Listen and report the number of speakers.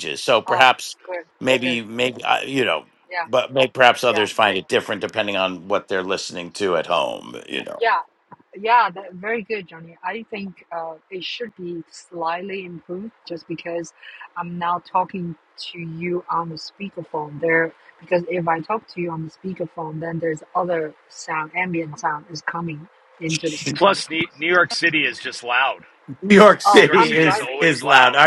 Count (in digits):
3